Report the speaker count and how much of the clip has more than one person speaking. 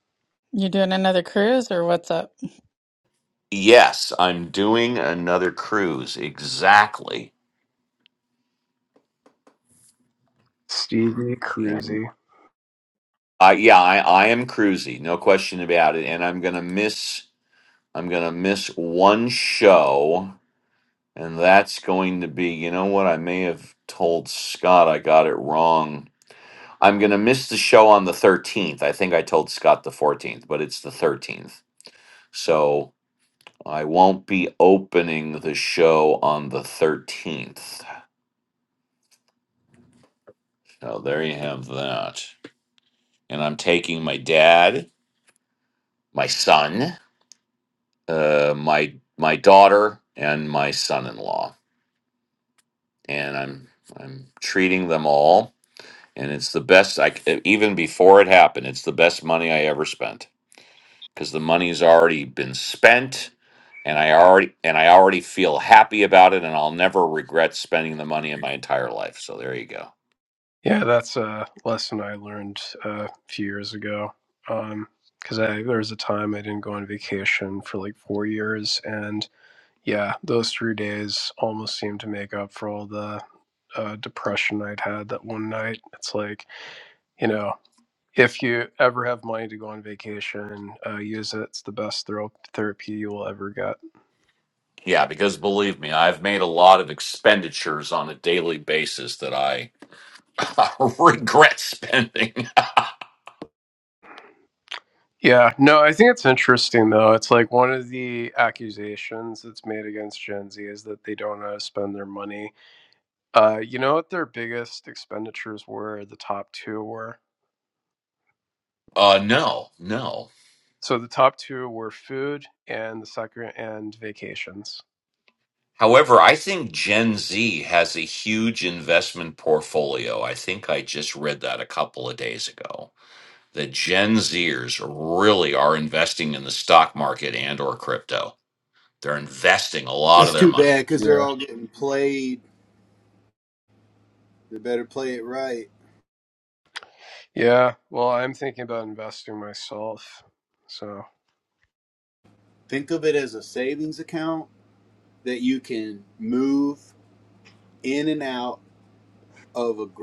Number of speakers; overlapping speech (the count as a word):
four, about 1%